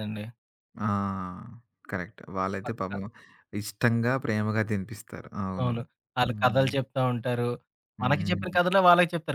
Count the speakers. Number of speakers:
two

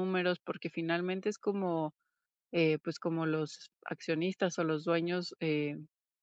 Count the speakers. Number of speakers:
one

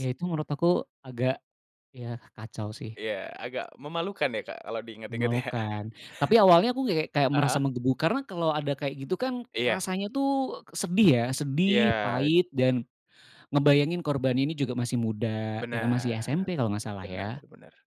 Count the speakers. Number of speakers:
two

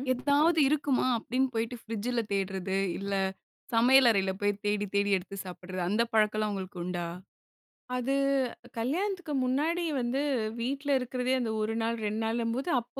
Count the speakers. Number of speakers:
two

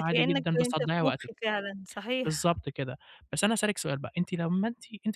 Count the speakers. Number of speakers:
two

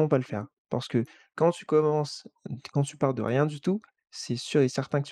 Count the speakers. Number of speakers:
one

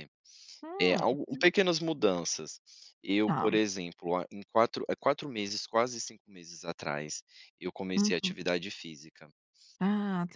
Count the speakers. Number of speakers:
two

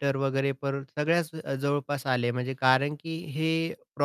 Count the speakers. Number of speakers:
one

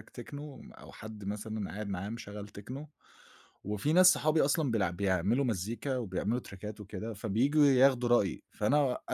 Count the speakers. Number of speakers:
one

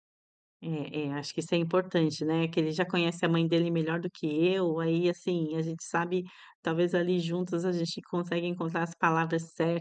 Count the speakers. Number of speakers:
one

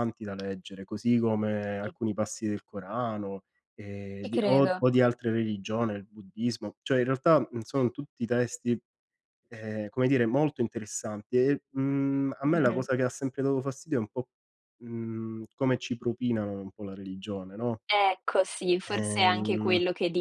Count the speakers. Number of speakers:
two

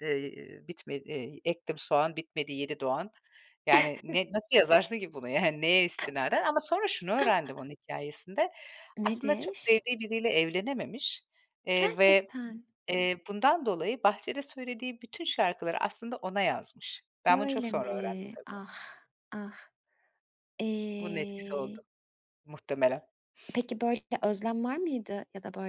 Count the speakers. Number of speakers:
two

